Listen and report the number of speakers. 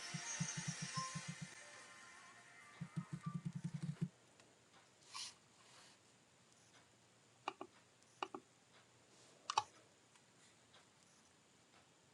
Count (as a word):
zero